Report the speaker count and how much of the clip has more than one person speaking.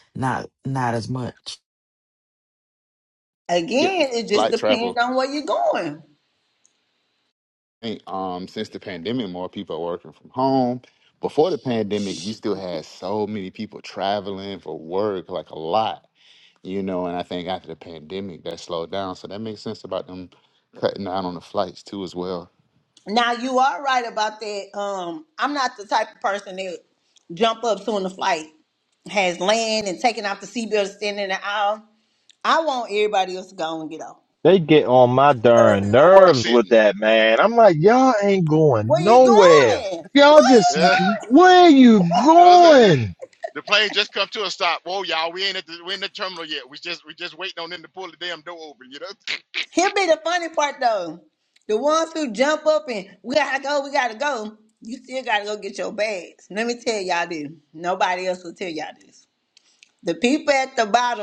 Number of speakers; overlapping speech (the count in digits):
5, about 7%